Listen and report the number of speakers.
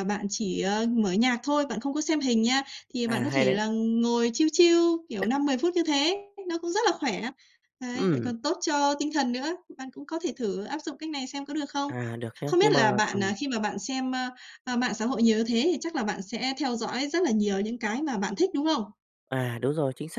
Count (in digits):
2